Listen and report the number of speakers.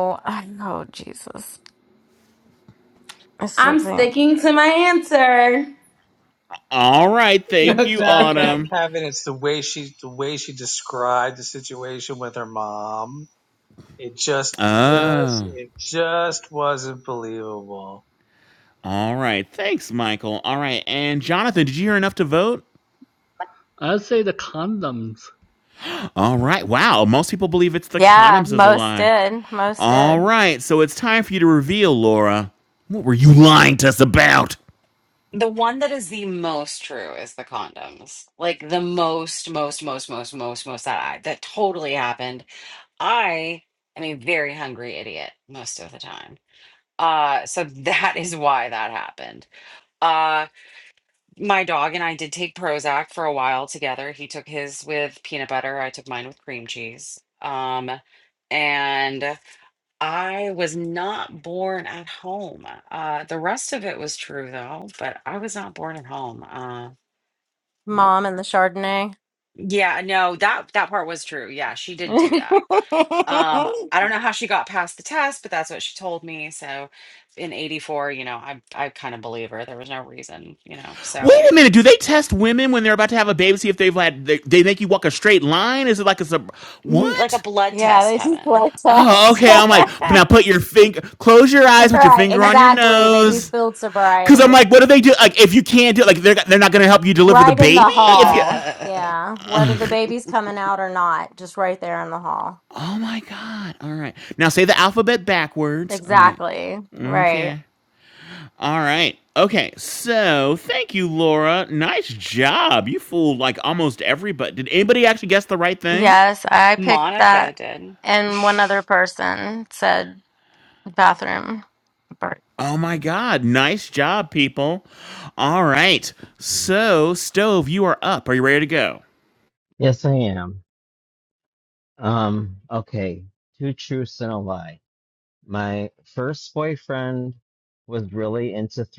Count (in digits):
7